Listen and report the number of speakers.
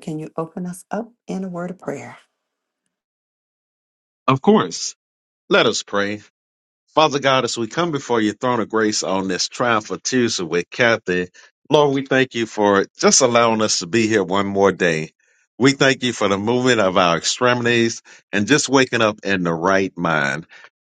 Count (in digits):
2